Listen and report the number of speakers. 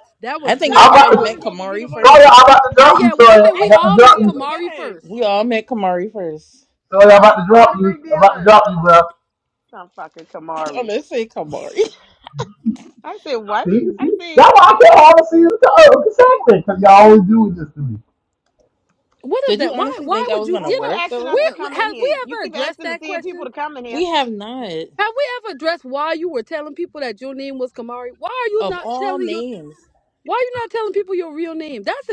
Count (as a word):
four